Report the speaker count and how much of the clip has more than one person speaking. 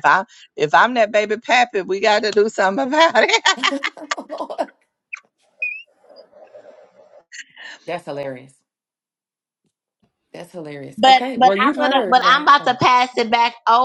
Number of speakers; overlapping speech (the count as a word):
three, about 11%